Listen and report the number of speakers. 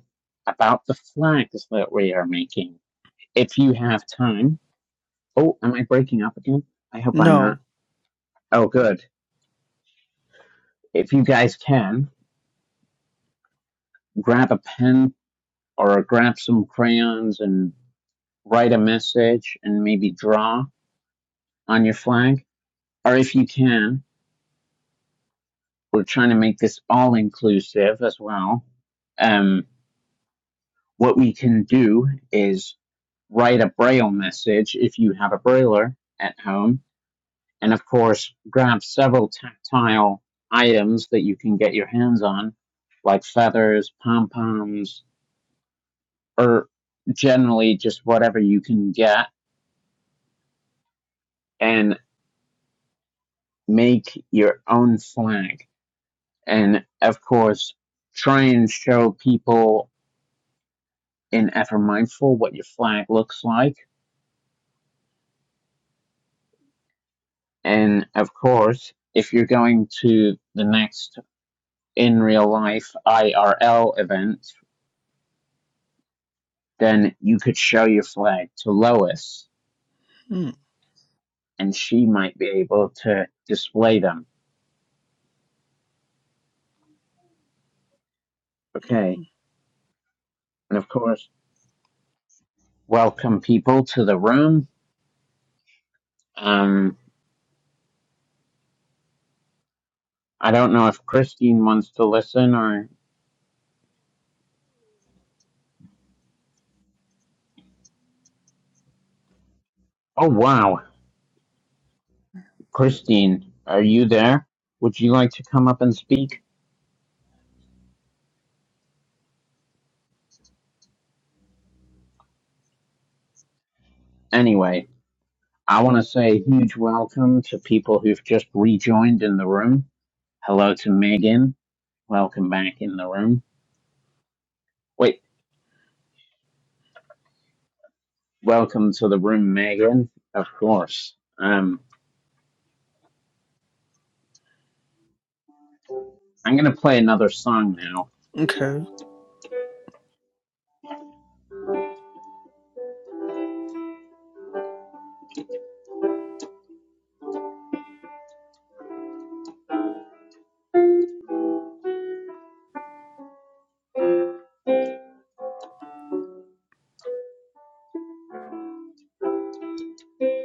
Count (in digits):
2